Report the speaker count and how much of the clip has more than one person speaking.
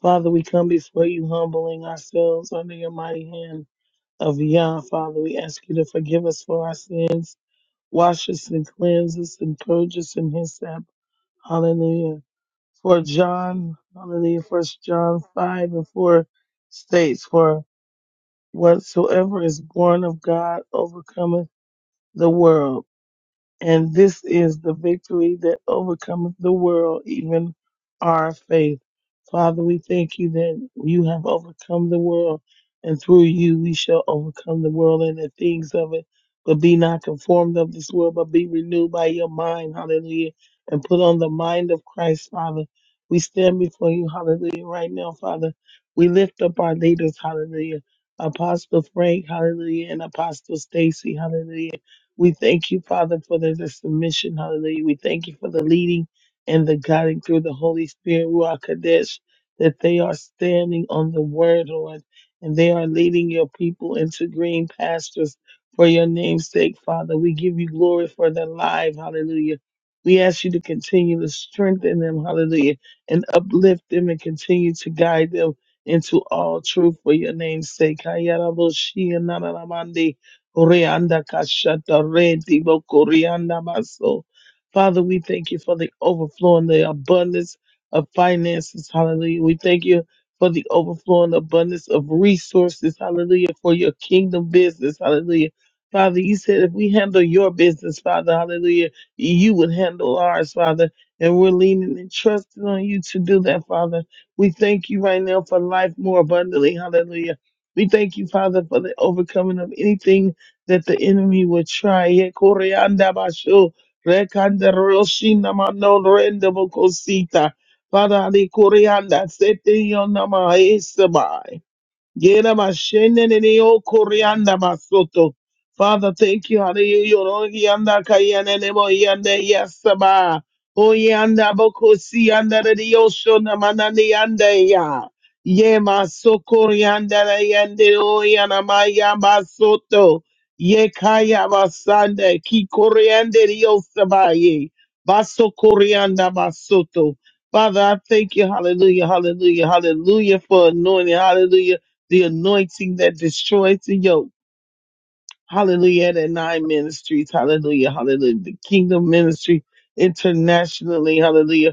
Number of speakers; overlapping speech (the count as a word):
one, no overlap